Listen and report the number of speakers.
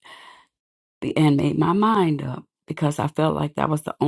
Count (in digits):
1